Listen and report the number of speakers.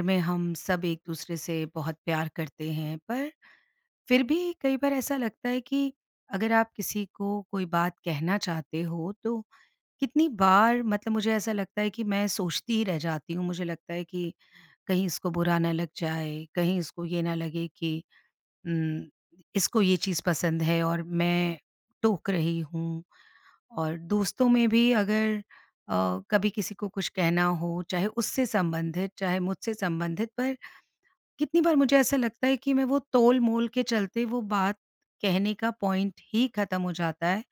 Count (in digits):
1